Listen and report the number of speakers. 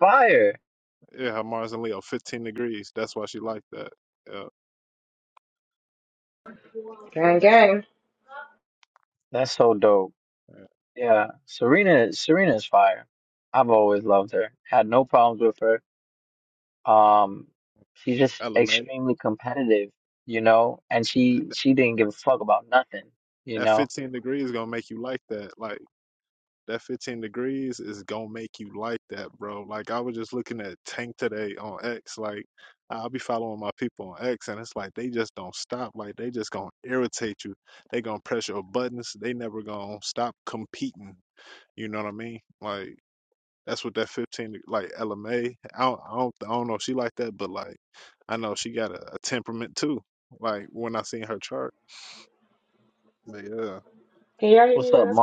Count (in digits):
3